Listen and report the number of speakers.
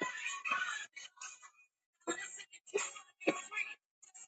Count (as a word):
zero